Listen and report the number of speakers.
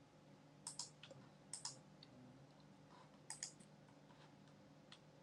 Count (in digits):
0